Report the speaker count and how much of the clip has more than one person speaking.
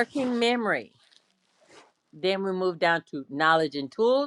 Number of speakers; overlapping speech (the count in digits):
1, no overlap